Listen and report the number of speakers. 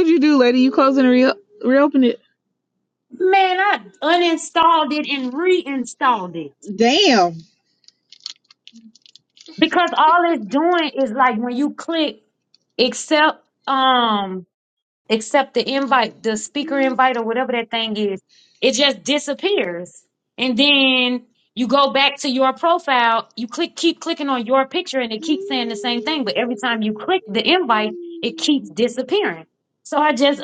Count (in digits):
2